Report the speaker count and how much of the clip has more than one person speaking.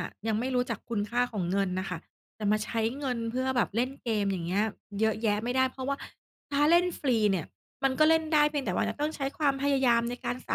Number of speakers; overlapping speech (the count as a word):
one, no overlap